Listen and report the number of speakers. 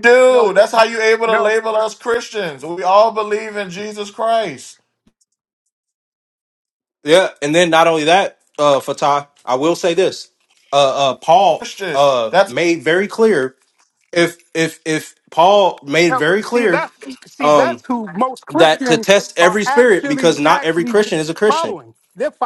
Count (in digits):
3